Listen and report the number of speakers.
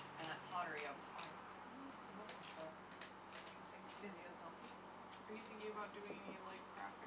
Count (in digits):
2